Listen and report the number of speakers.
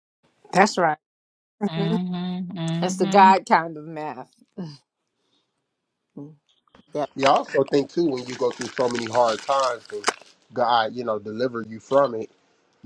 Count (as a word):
three